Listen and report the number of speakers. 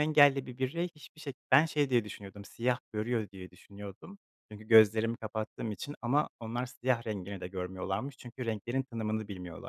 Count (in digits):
1